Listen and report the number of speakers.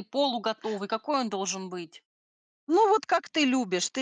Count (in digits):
2